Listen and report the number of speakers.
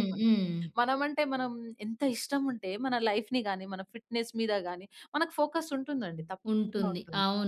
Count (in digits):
2